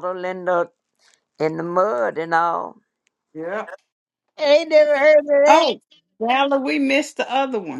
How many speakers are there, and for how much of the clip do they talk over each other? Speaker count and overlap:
3, about 2%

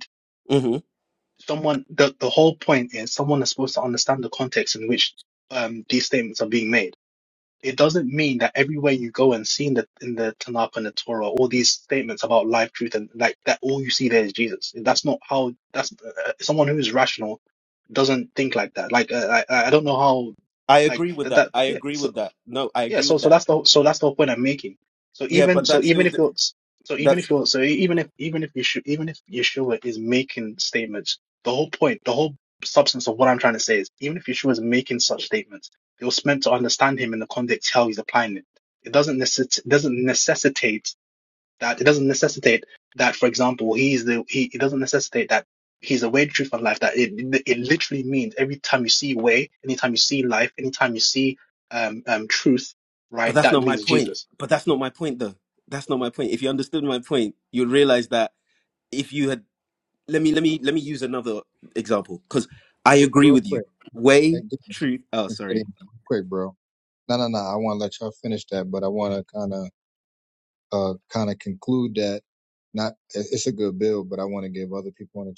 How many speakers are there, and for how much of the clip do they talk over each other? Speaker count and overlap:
3, about 6%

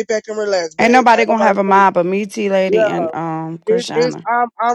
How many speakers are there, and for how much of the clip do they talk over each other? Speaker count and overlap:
2, about 38%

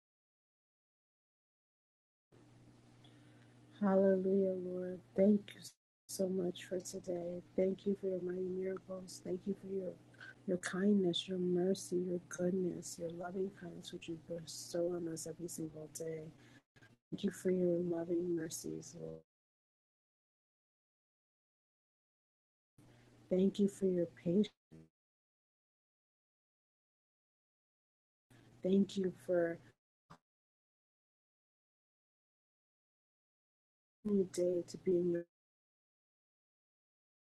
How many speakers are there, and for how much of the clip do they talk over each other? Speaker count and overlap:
1, no overlap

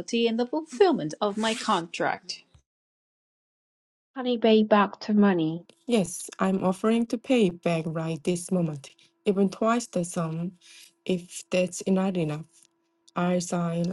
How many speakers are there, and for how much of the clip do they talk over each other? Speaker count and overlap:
3, no overlap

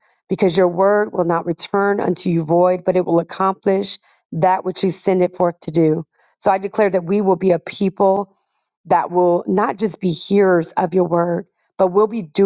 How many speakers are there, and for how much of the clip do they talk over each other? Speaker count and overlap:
1, no overlap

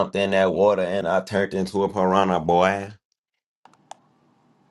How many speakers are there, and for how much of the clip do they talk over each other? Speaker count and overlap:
1, no overlap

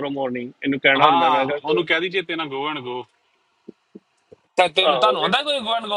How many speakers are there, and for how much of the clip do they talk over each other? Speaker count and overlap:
3, about 23%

